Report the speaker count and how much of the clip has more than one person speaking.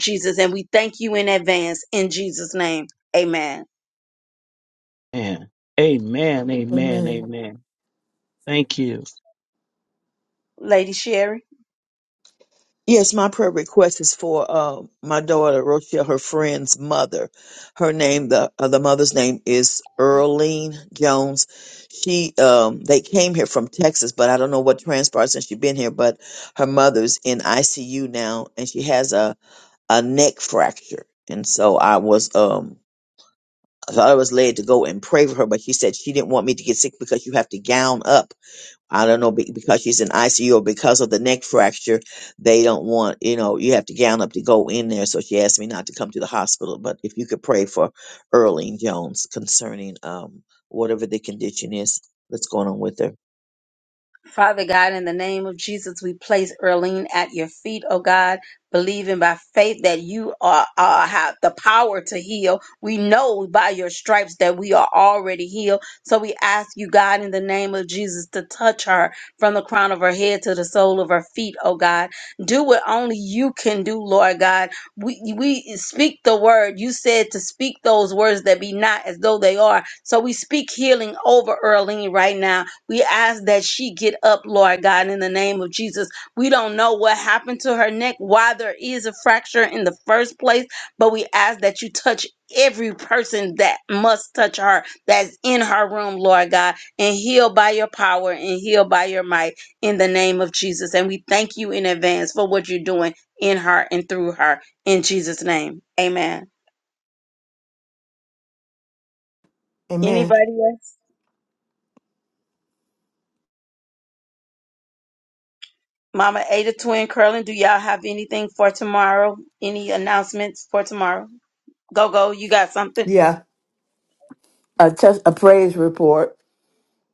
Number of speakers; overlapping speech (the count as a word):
four, about 1%